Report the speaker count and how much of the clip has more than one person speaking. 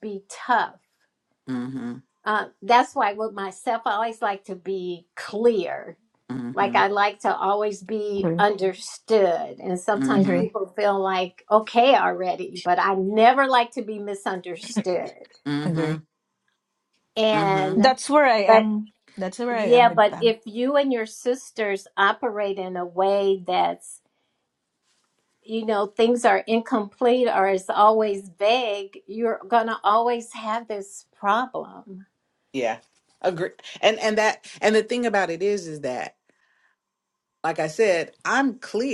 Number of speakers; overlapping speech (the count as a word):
three, about 7%